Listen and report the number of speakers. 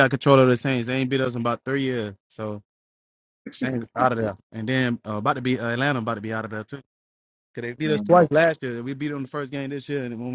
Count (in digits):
1